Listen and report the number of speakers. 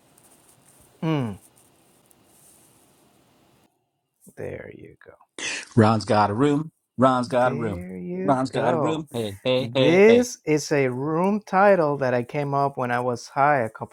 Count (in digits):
2